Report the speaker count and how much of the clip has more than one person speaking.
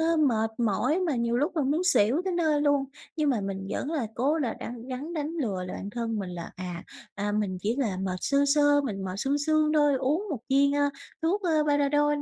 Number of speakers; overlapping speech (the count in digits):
1, no overlap